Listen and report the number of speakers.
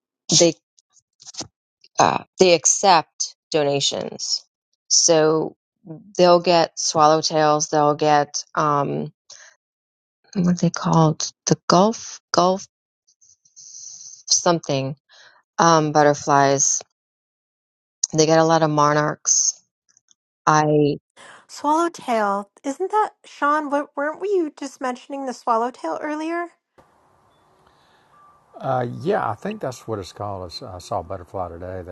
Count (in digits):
3